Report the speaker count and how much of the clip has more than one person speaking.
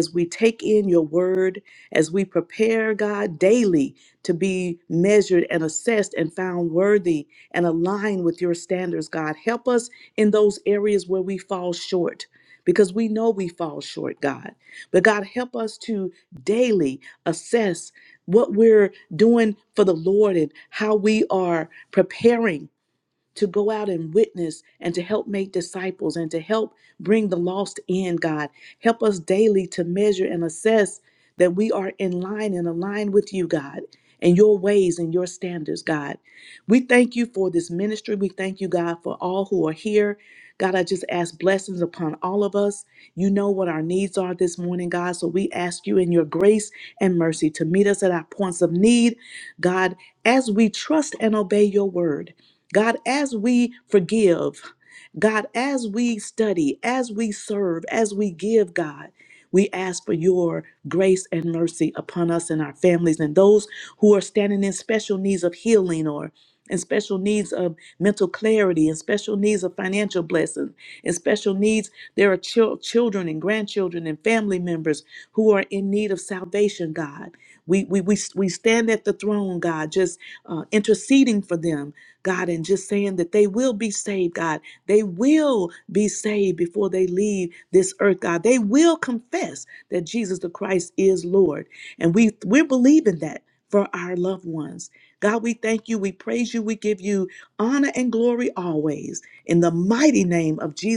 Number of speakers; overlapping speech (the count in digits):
1, no overlap